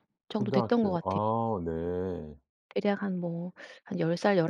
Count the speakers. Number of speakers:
2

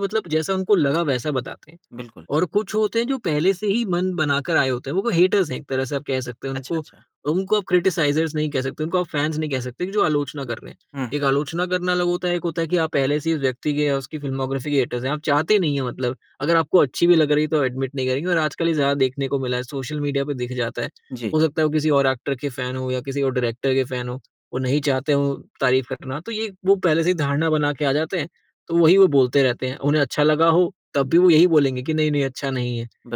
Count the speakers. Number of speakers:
2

